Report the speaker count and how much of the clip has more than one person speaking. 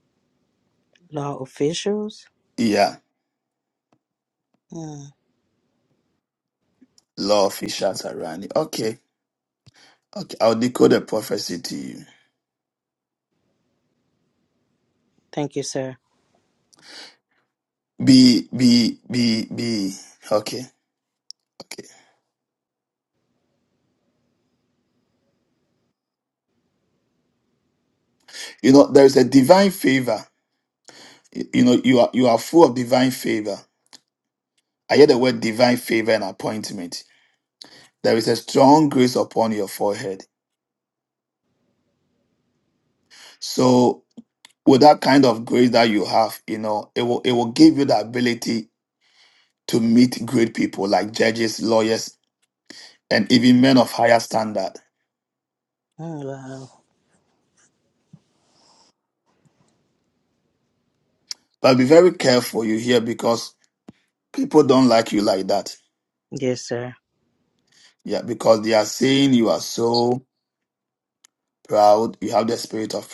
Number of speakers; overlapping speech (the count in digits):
2, no overlap